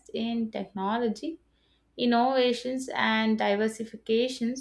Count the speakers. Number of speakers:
1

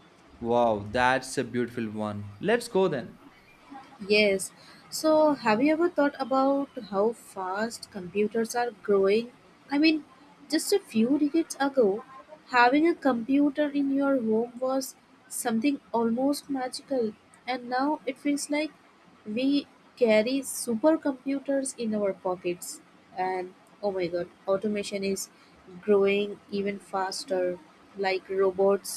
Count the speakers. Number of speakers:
2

